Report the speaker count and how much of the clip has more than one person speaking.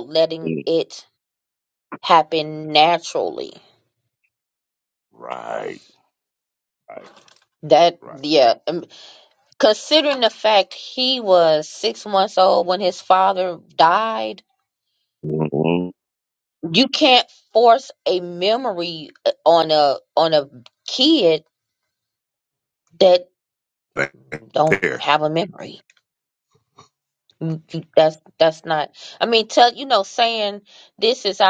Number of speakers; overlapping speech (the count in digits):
2, about 2%